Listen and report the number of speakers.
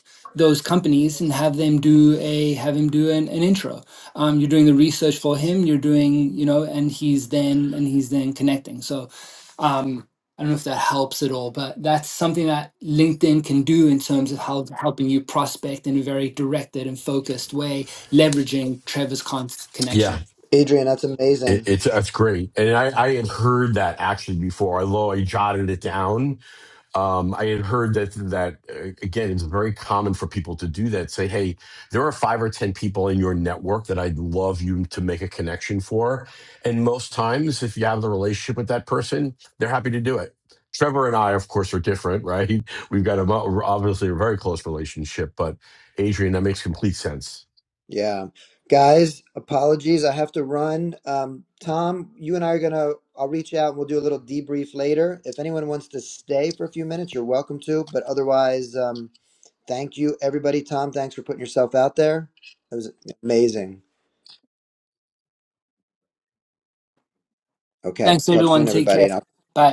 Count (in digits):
3